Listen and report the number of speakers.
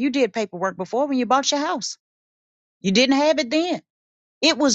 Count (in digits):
1